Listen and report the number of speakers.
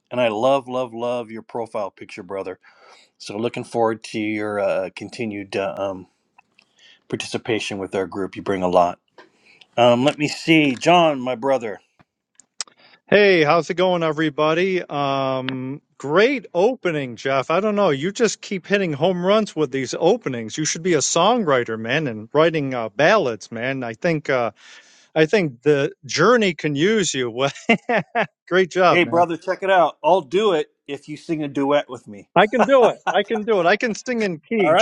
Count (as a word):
two